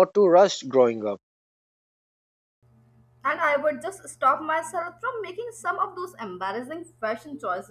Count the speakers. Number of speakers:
2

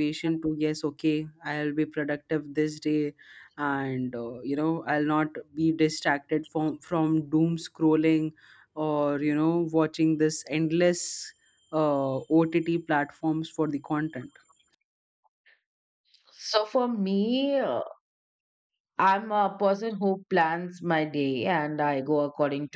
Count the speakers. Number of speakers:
2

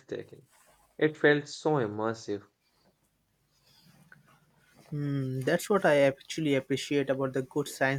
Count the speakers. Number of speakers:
2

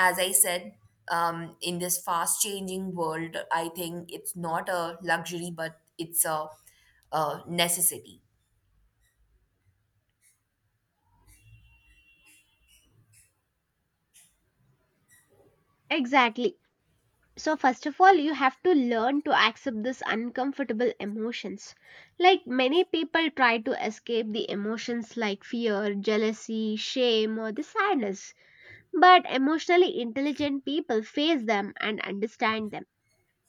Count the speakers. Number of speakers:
2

